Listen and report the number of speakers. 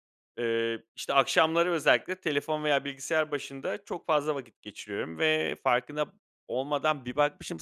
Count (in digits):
1